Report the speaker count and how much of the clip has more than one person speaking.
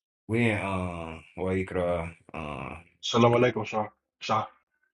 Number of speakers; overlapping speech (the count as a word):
two, no overlap